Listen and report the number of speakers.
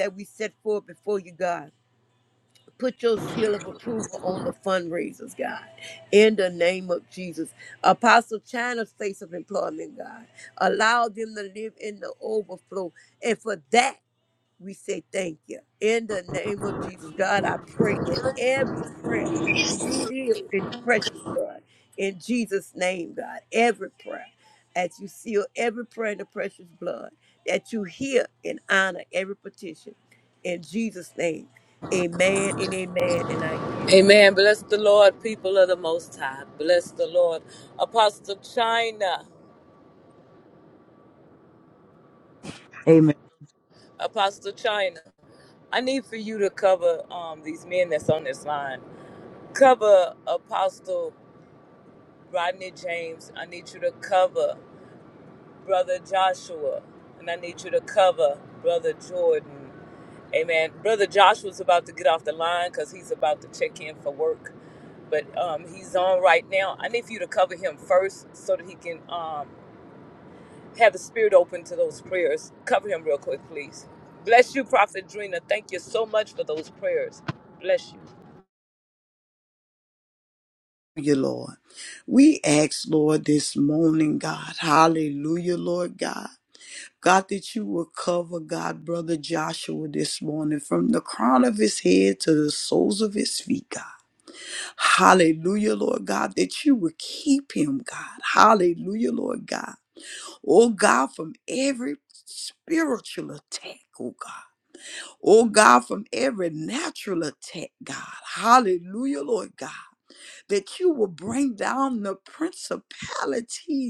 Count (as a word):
three